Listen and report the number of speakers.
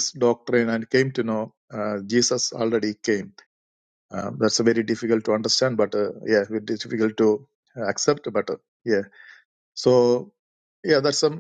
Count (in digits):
1